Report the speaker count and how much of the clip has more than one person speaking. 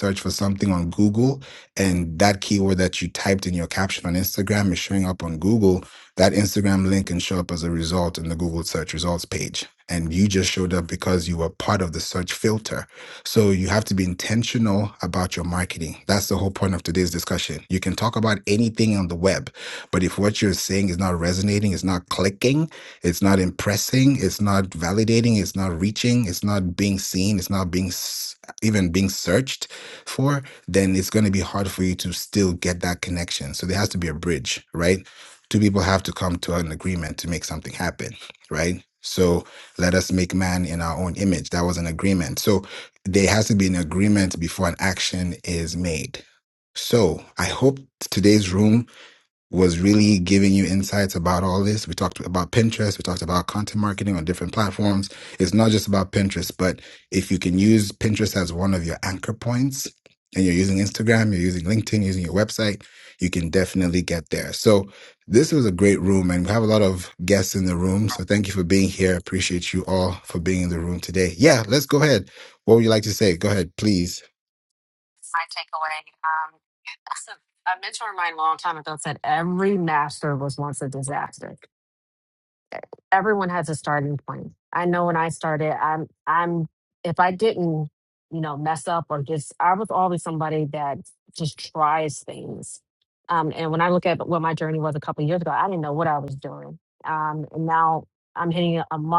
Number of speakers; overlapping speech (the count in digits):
2, no overlap